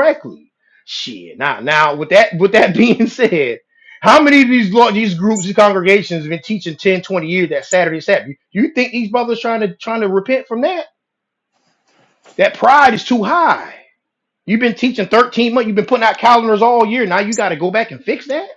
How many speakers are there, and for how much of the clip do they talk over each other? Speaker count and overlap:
one, no overlap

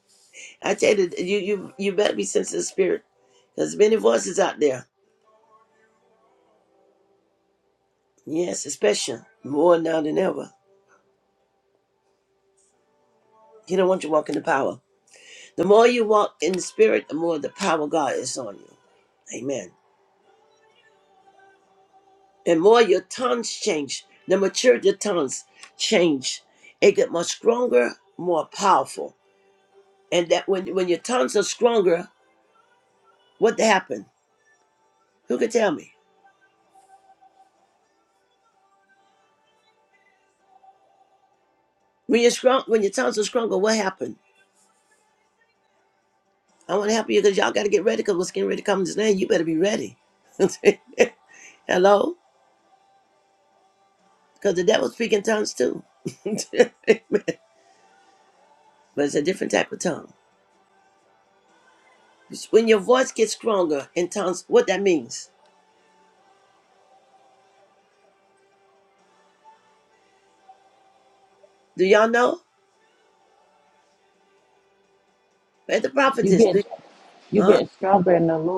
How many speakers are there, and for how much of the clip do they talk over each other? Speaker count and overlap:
two, about 1%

